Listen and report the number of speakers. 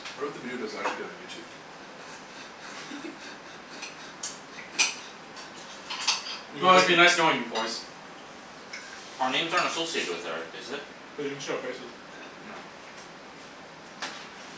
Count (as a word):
four